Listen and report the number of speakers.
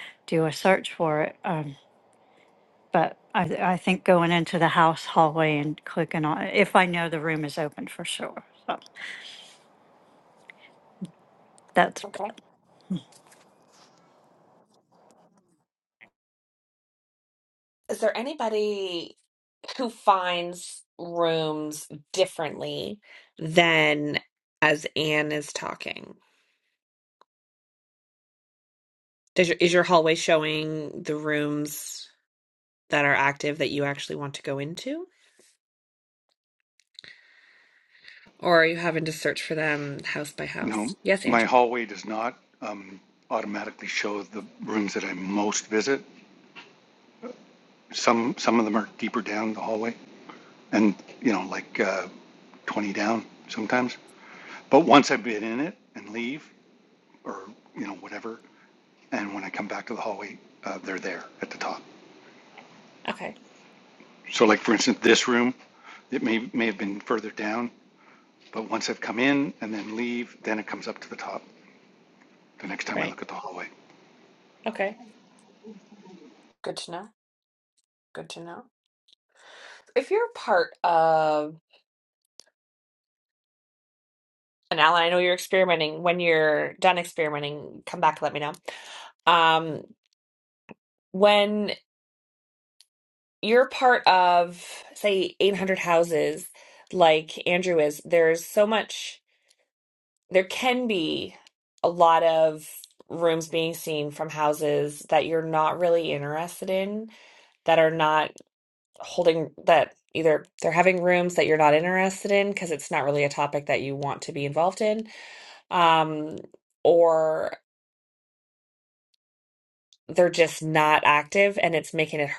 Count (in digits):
3